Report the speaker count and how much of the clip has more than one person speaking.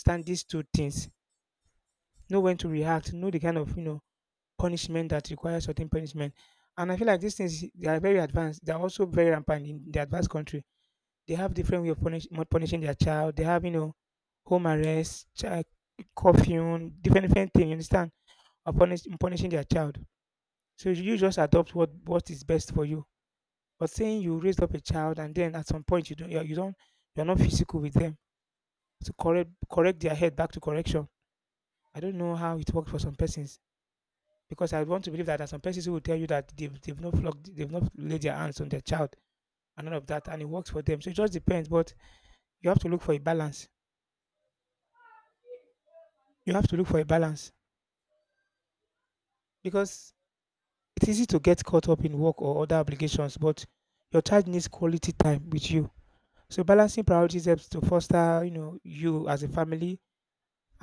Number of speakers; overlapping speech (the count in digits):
1, no overlap